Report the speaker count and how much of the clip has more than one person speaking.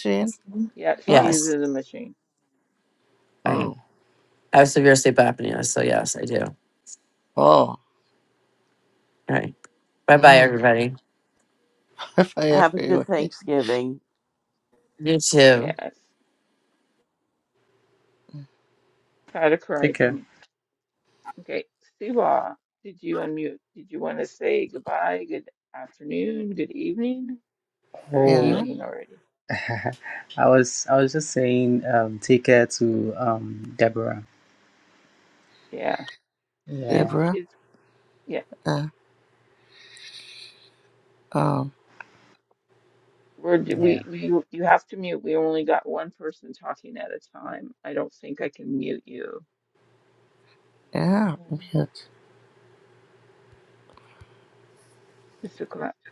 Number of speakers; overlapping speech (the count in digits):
5, about 5%